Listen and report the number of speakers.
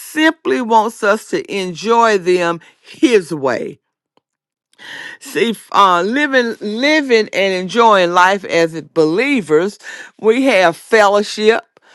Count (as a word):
one